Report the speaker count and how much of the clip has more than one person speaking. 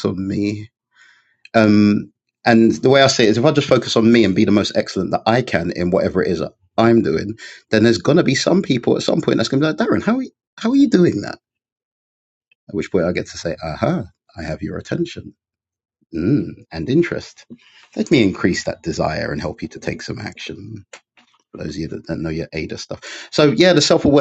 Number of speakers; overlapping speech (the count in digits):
1, no overlap